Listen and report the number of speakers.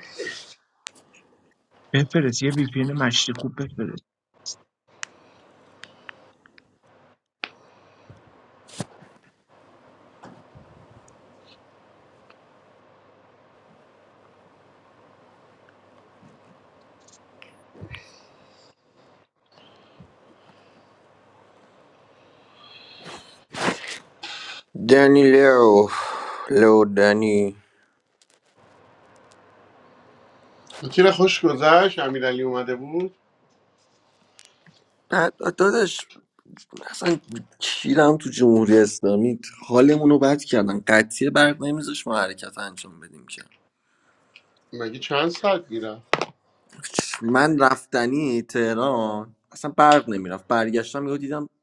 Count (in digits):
3